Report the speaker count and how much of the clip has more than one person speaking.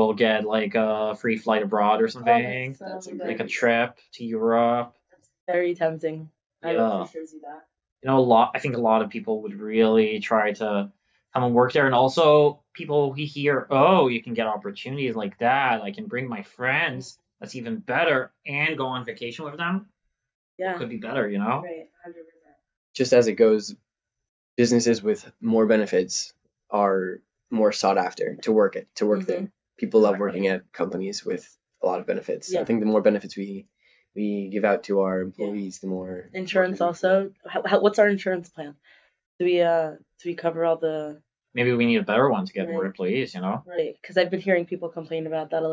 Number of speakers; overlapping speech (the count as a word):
three, about 12%